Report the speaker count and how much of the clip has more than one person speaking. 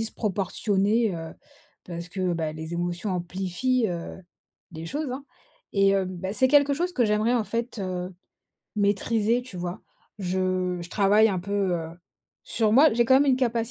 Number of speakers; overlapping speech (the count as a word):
one, no overlap